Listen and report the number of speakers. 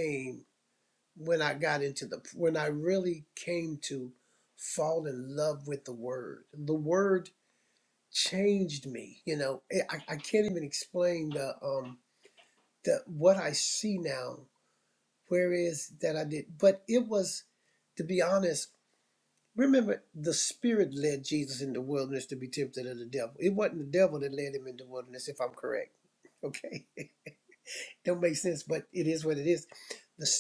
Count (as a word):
one